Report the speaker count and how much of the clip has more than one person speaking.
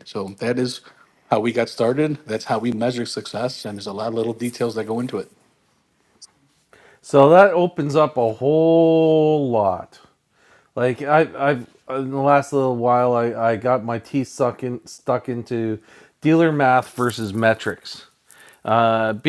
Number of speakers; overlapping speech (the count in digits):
2, no overlap